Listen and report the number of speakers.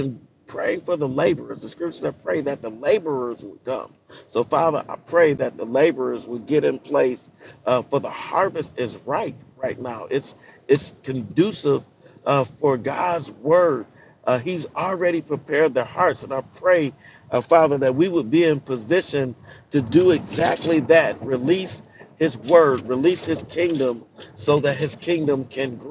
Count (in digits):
1